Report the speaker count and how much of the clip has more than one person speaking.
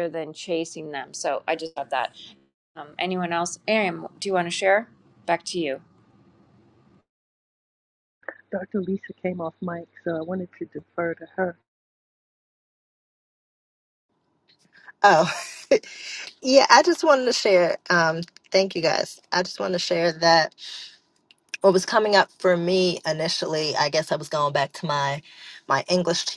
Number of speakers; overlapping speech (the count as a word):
three, no overlap